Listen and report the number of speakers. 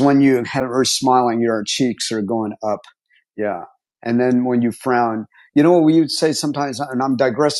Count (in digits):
1